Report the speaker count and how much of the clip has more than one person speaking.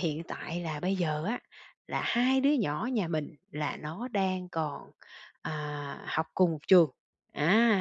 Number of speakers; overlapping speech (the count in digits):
1, no overlap